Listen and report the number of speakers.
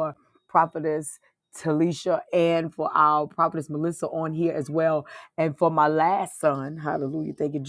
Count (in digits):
1